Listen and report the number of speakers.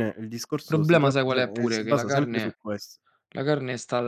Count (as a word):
two